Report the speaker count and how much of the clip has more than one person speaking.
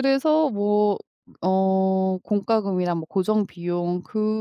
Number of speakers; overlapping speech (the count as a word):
one, no overlap